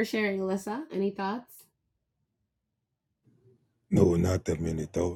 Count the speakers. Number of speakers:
two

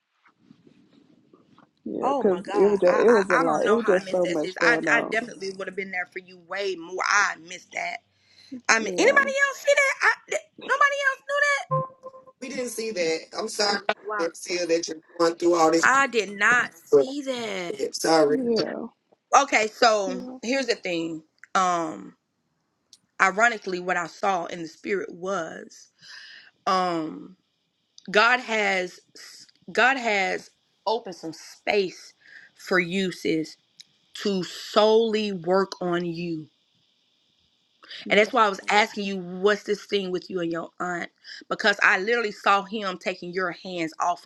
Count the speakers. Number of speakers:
three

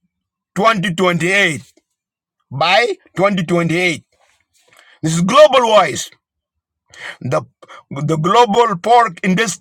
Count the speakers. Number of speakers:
one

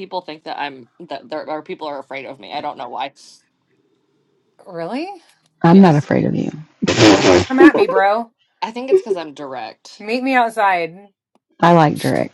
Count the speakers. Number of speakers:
three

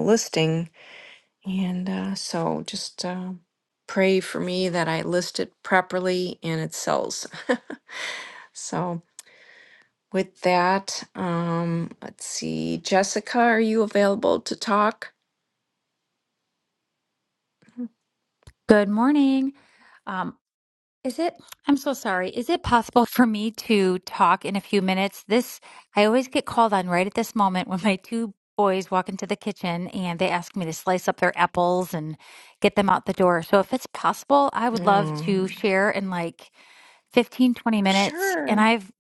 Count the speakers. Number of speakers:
two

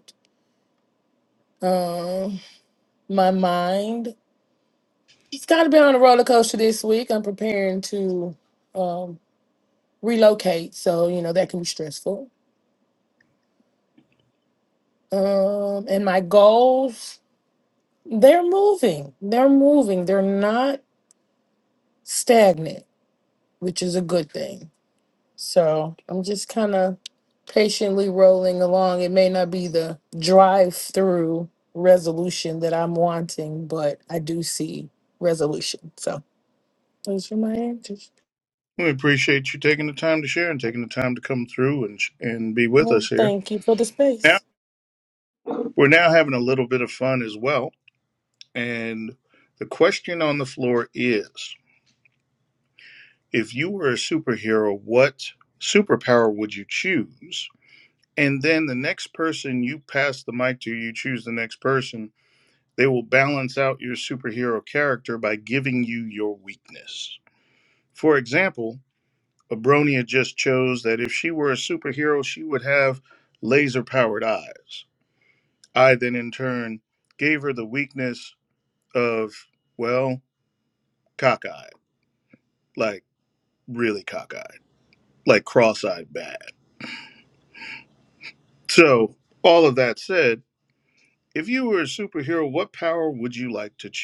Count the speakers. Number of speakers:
two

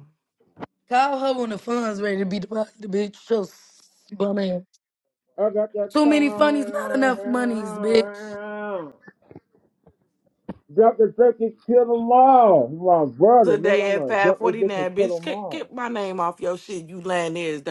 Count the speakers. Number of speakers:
three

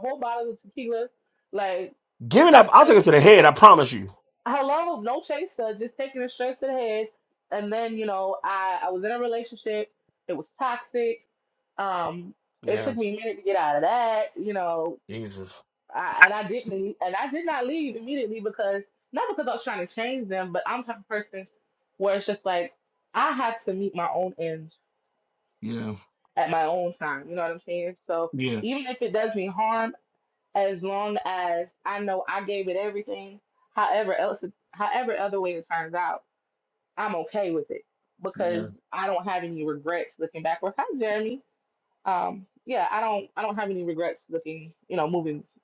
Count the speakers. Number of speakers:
two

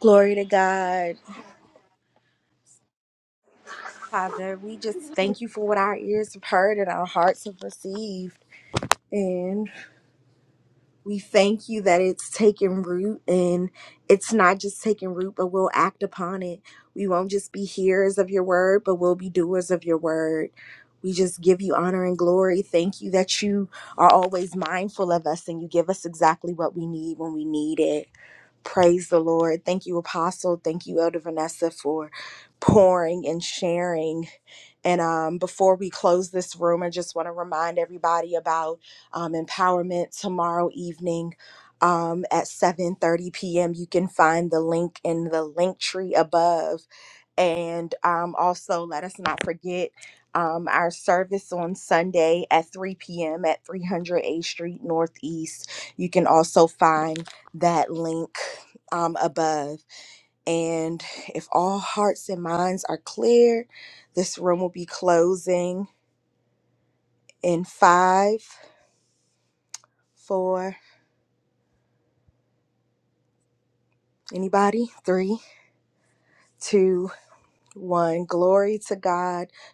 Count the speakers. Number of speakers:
one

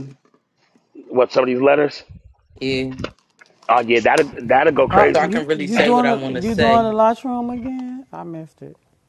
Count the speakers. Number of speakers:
three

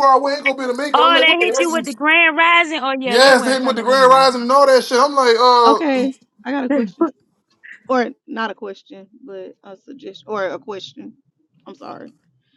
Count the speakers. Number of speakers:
three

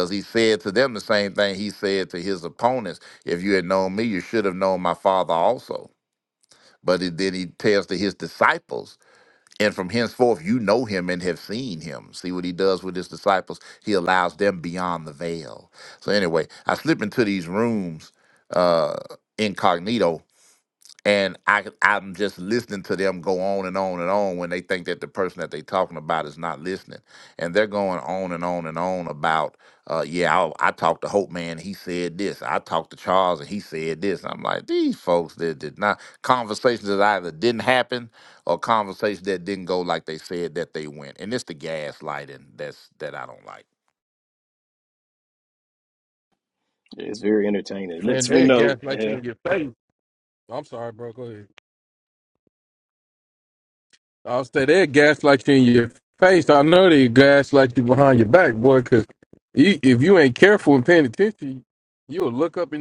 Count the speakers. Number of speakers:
three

